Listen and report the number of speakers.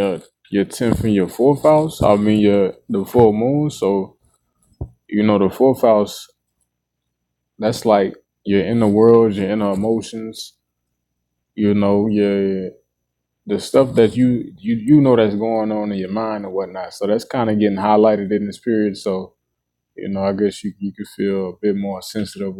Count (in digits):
1